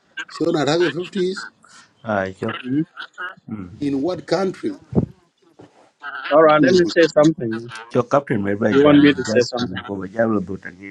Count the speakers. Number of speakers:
three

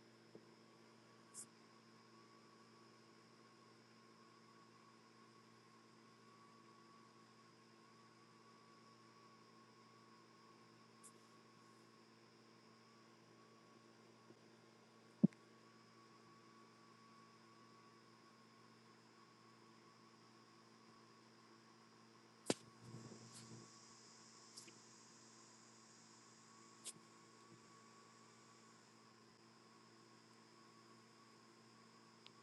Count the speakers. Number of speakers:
zero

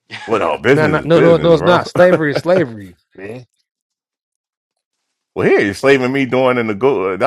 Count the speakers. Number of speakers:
two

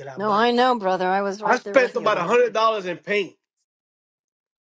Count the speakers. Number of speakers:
two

